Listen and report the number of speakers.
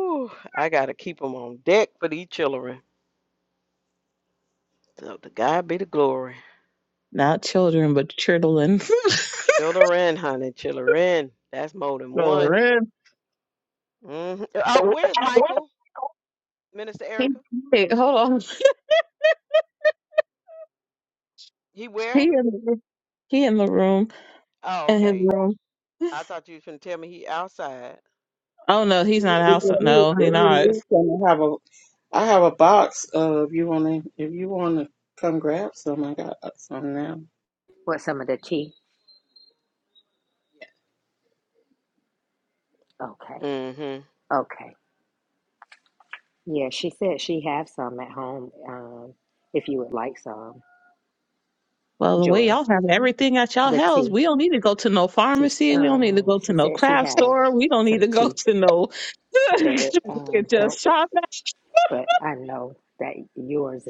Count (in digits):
4